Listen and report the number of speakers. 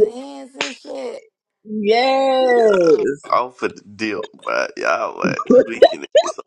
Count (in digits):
3